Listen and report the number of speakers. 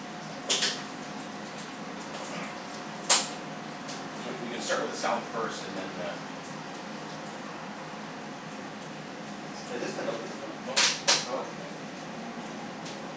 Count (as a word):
two